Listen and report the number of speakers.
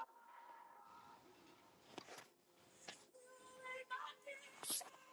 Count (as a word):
zero